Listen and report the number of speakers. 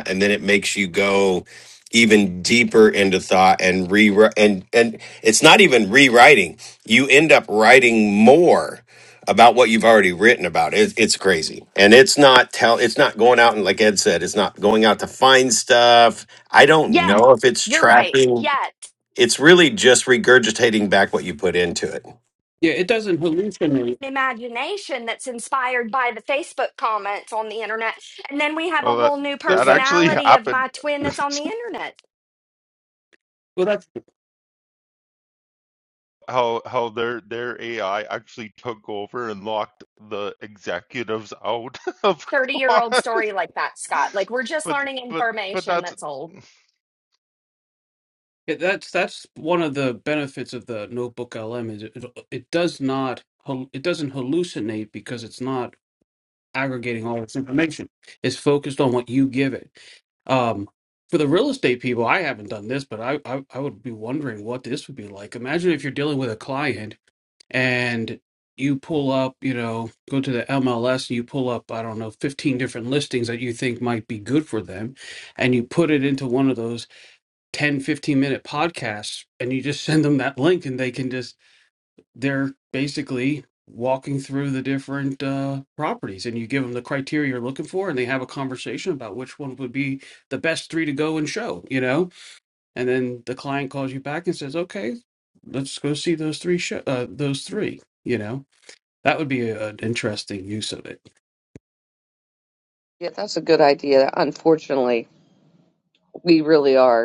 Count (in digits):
5